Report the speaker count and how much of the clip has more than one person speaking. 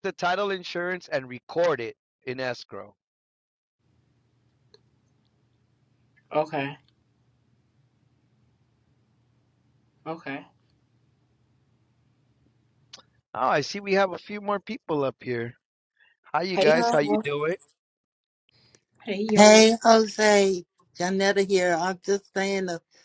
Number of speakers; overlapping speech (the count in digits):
3, about 4%